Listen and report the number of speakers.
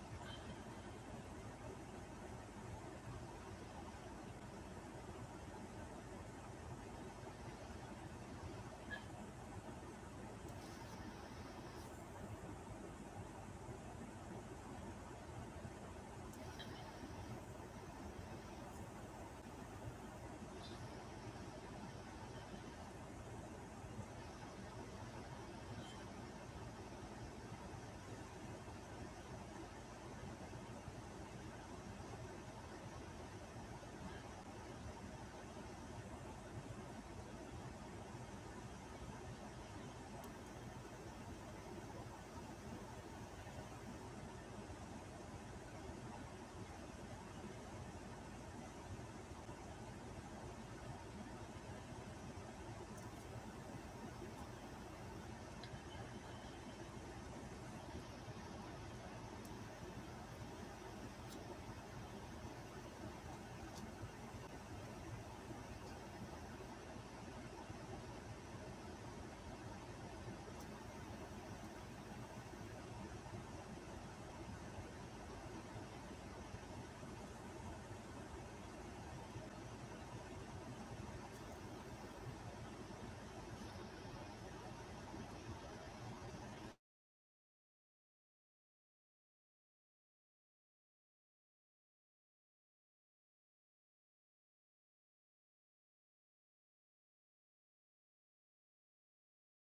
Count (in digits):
0